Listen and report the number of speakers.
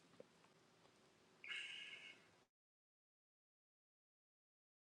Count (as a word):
zero